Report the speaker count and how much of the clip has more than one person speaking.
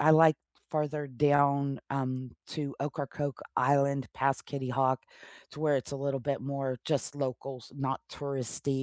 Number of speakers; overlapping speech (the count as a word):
one, no overlap